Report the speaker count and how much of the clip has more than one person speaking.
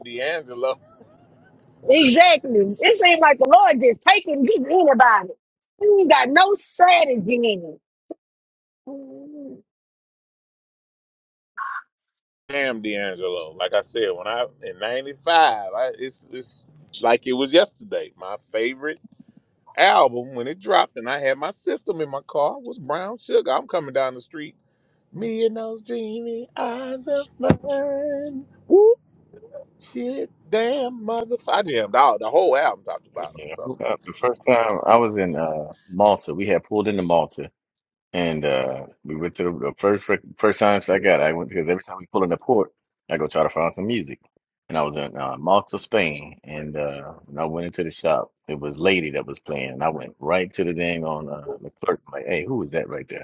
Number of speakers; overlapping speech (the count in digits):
3, about 1%